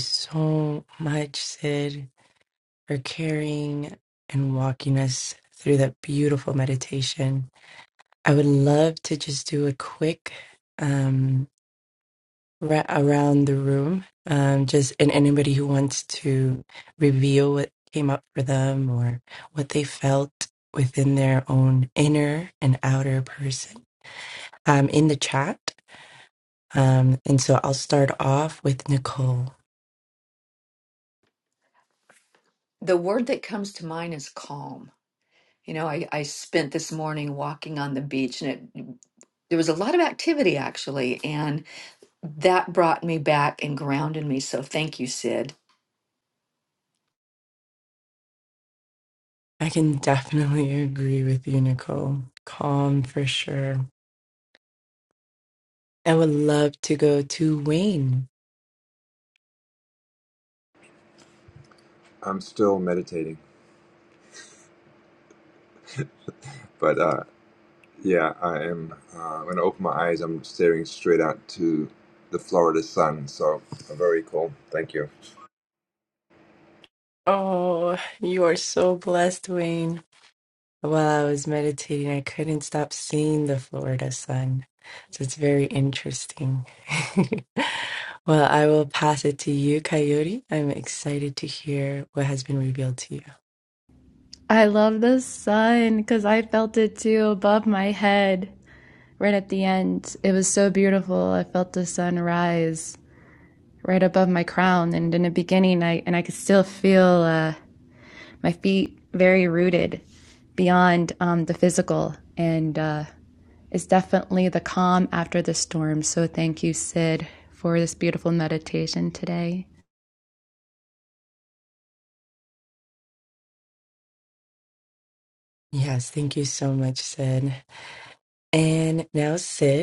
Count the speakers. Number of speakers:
four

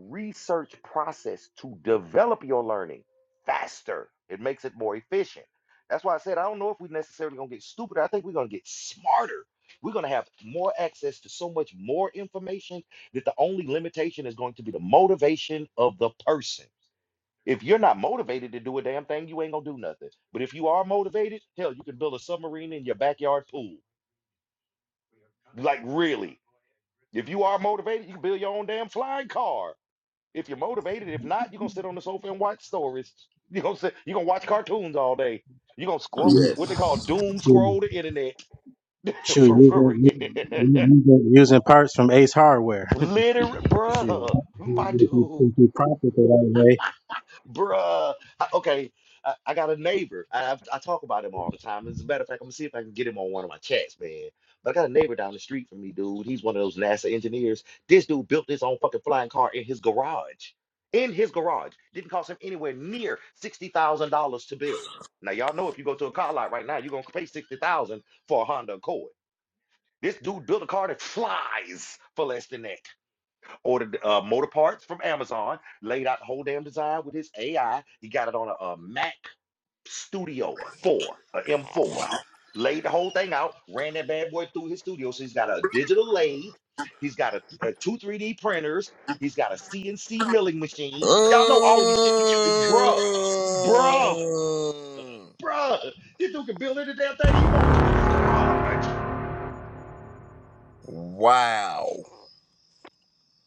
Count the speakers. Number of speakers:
three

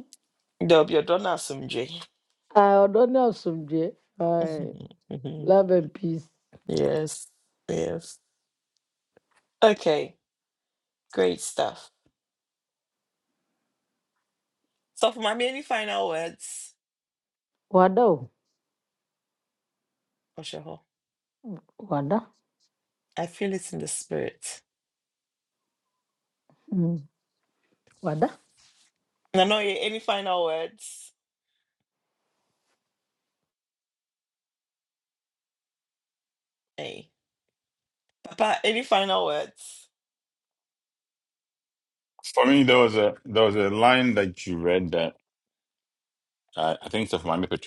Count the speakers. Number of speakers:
three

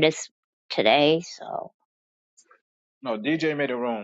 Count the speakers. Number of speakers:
two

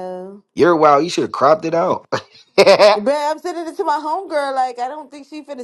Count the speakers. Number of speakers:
two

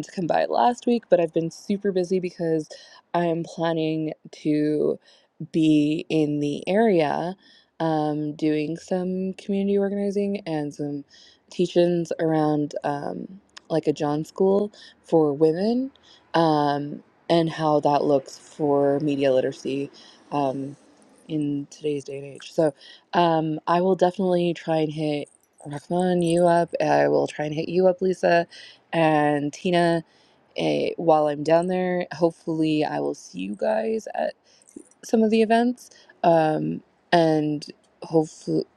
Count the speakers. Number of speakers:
one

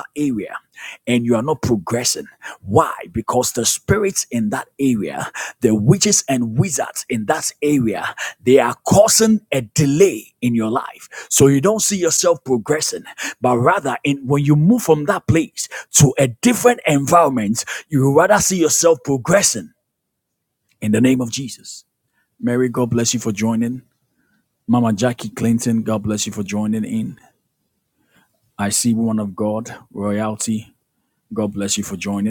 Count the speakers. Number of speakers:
one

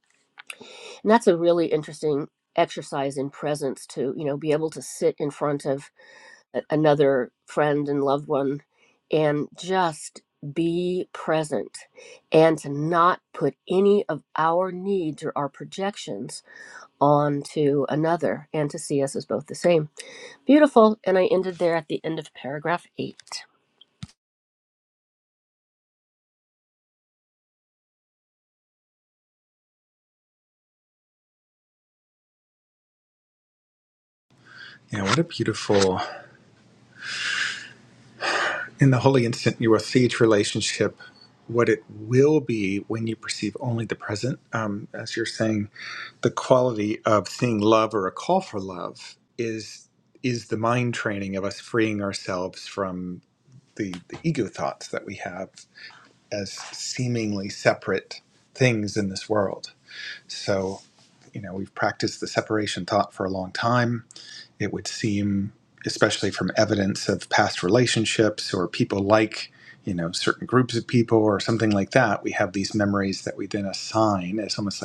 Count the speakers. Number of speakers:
two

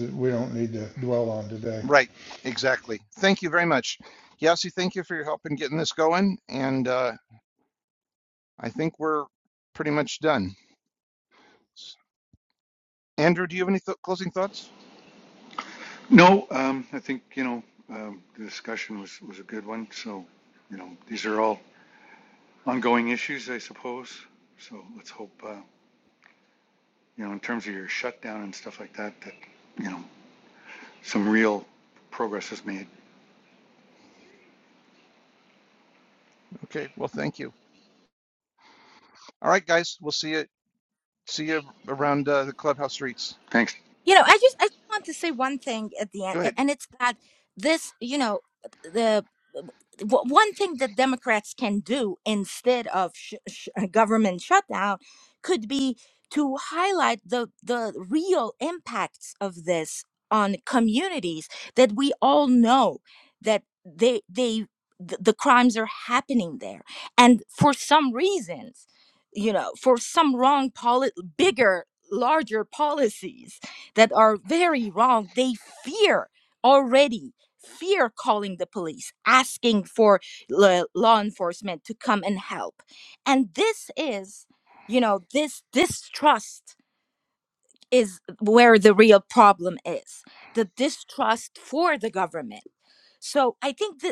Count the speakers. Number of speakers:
four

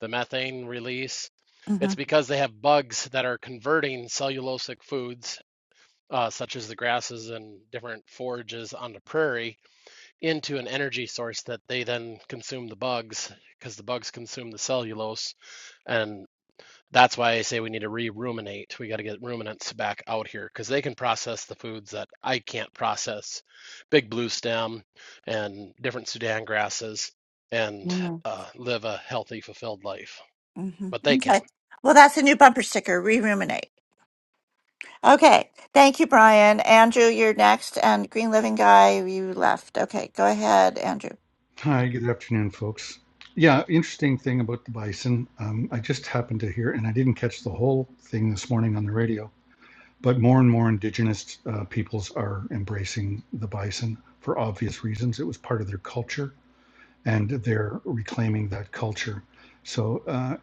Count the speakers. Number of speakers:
three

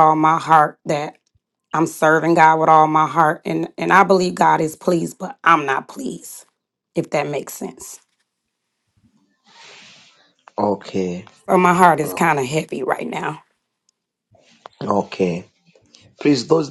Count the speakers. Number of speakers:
two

